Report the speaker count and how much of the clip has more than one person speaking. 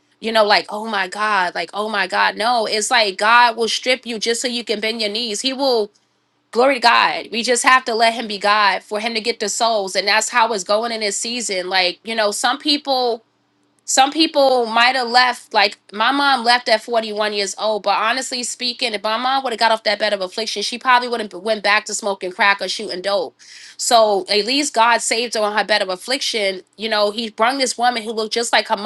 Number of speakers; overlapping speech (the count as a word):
one, no overlap